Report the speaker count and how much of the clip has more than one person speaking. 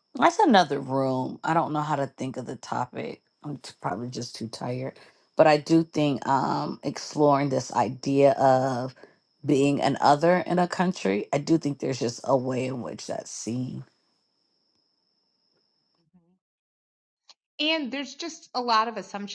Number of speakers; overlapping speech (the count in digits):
2, no overlap